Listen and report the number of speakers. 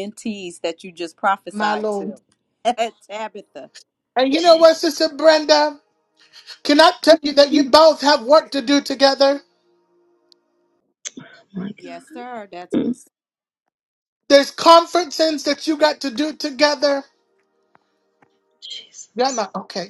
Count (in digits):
3